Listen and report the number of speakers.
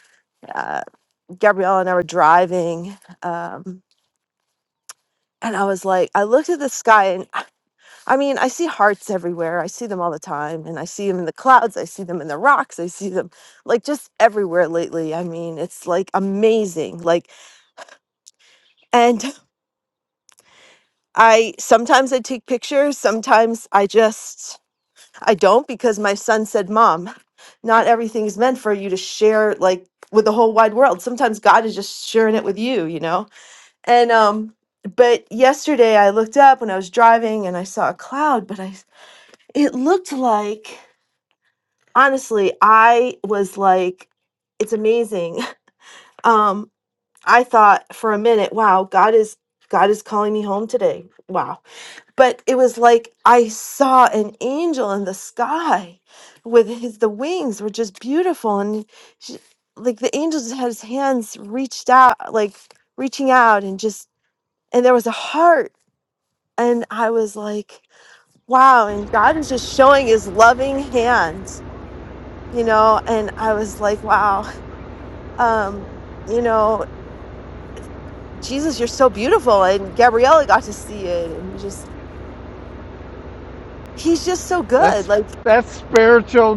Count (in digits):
2